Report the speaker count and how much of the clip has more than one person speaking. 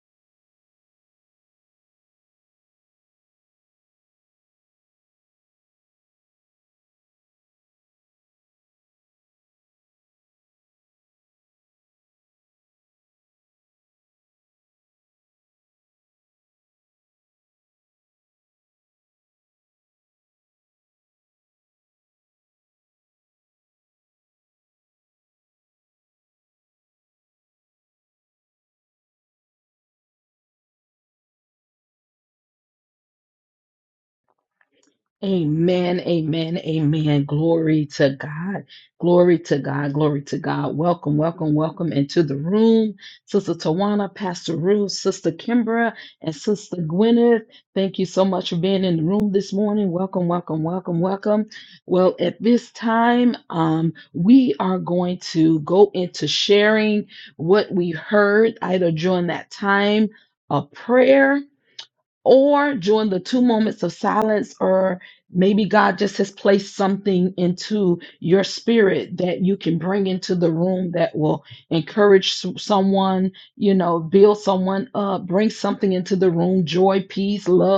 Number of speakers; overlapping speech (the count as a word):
one, no overlap